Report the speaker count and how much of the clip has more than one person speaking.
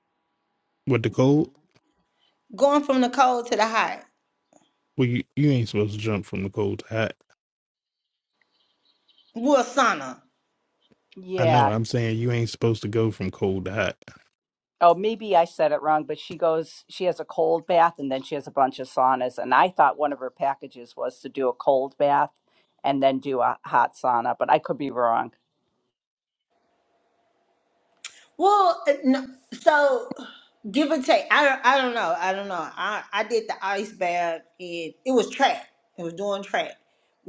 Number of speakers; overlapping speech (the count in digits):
3, about 1%